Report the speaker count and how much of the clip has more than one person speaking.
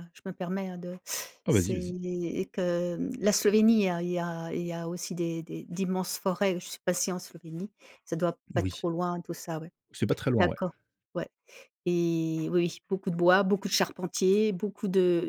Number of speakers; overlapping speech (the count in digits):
2, about 5%